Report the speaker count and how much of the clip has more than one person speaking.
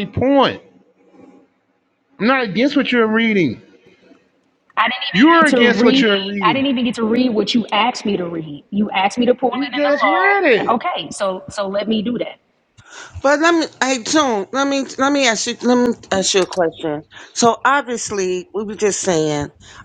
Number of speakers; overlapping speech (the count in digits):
3, about 14%